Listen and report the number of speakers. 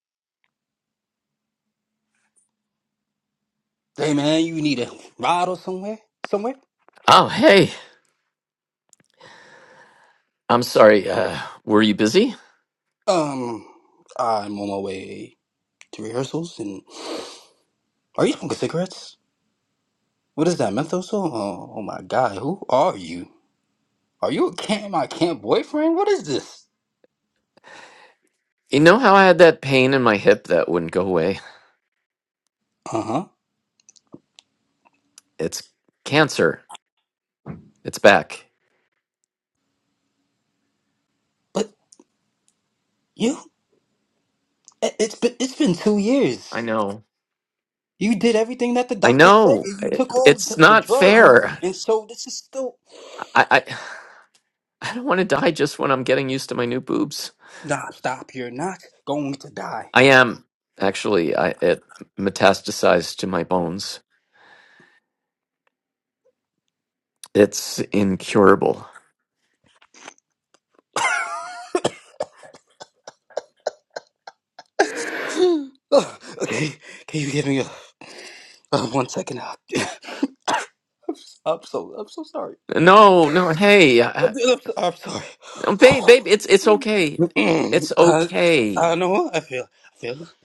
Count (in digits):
2